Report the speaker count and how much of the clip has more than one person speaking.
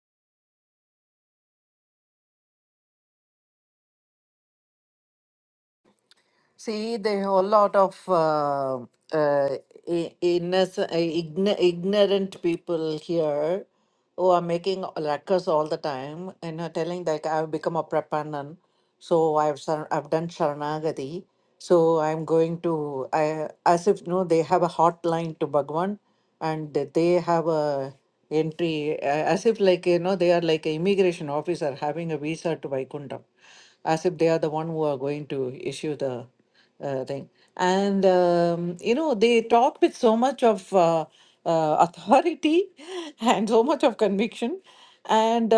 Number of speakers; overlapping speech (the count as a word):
one, no overlap